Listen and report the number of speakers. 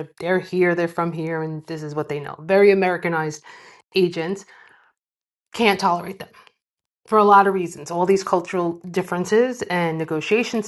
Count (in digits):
1